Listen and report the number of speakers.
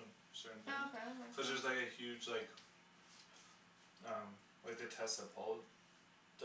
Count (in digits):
2